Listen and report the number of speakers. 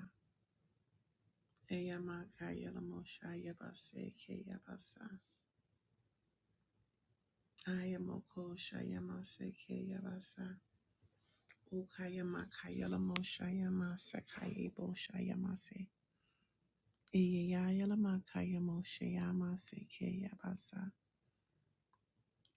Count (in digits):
1